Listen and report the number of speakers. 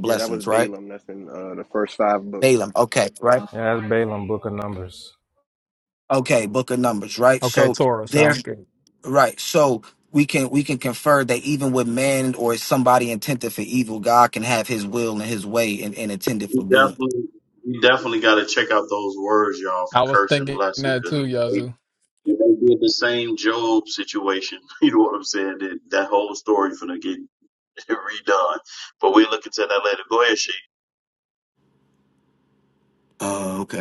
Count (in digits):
5